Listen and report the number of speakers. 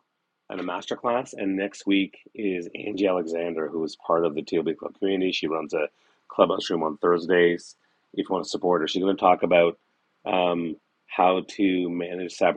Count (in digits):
1